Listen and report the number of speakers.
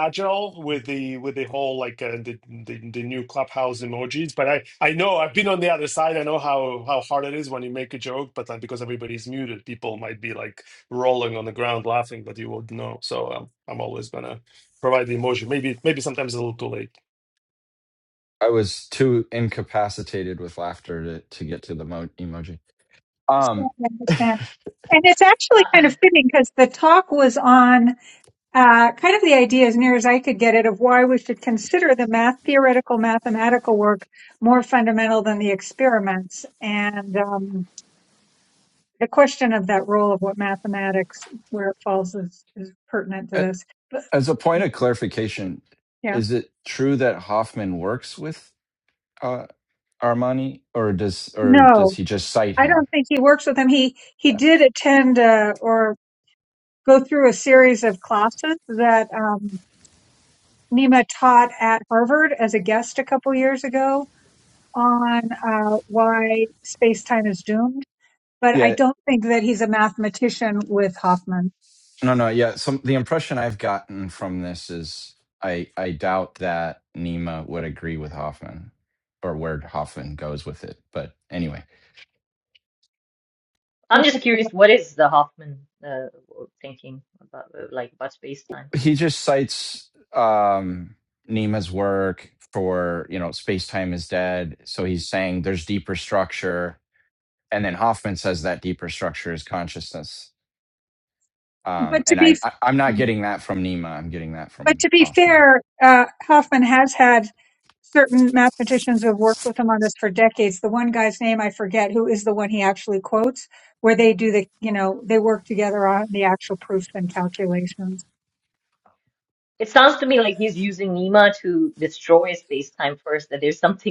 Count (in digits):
4